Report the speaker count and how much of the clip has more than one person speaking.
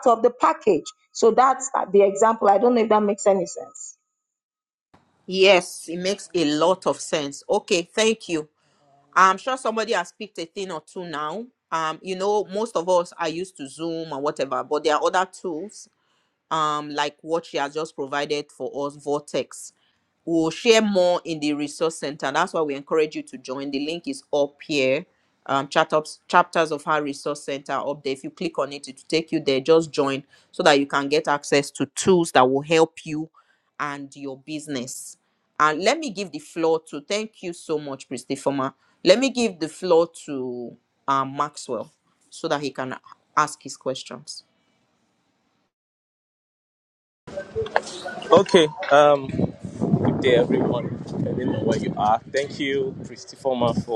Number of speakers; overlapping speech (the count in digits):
3, no overlap